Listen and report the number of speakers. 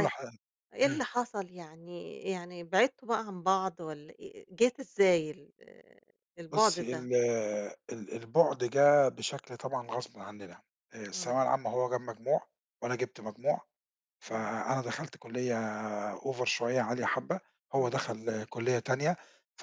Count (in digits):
2